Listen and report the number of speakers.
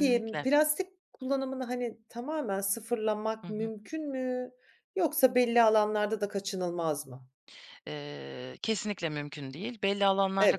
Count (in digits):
2